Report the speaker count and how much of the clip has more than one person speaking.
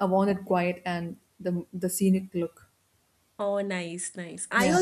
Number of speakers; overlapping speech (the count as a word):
two, about 5%